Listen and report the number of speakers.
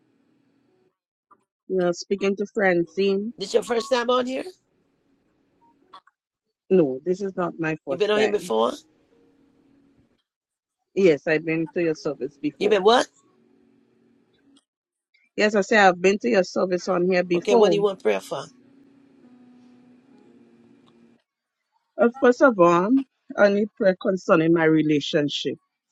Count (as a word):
two